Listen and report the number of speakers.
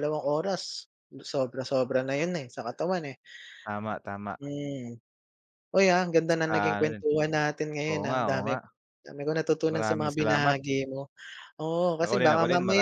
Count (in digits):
2